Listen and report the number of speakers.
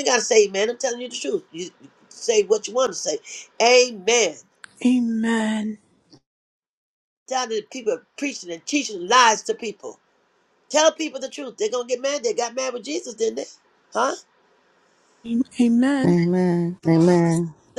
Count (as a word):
three